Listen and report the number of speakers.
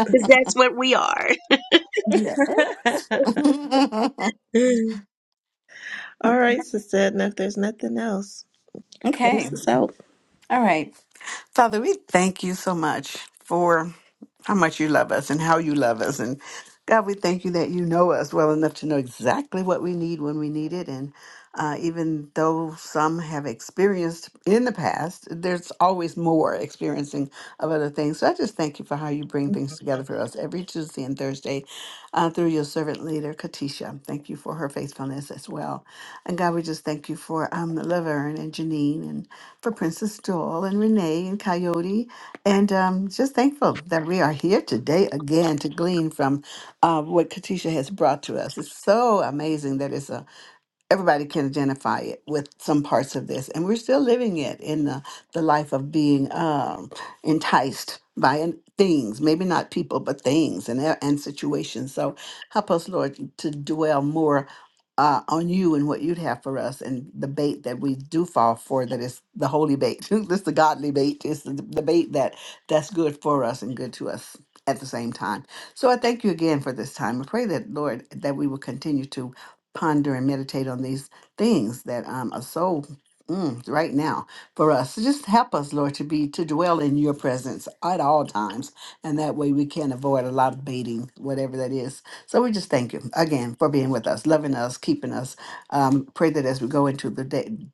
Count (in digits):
3